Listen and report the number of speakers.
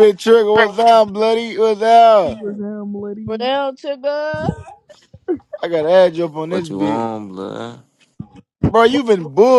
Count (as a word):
four